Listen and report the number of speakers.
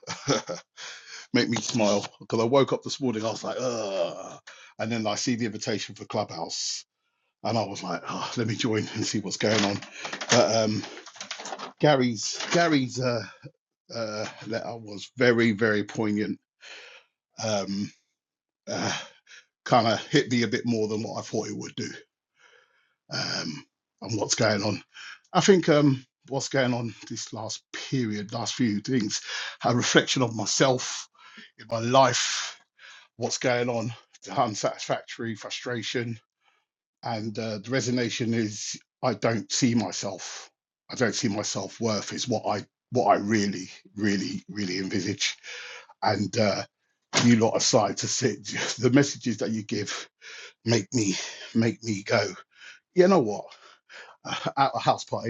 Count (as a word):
one